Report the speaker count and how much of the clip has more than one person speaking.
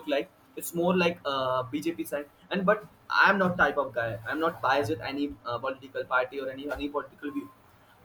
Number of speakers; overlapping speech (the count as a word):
one, no overlap